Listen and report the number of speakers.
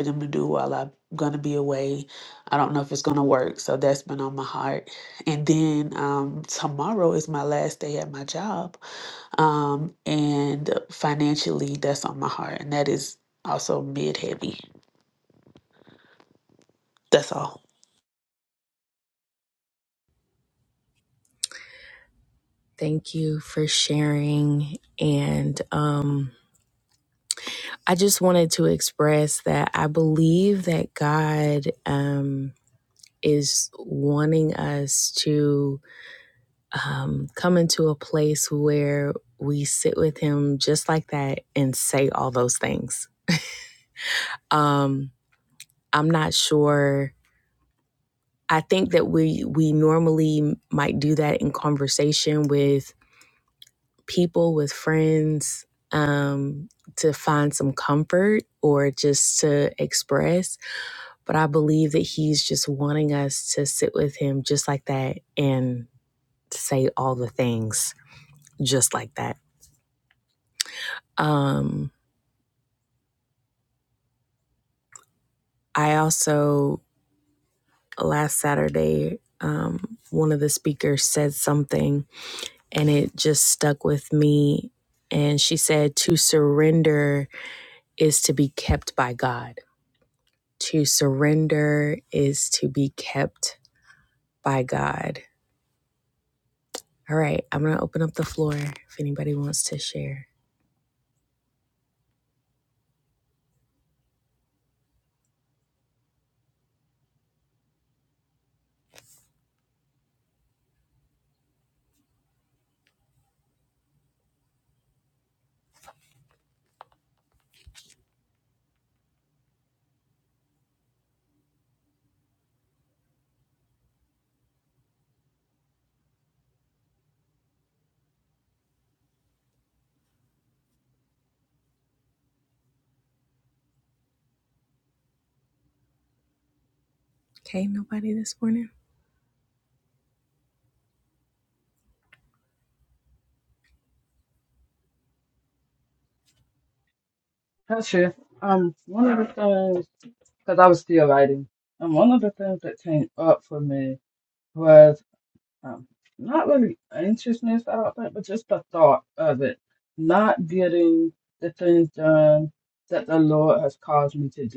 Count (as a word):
three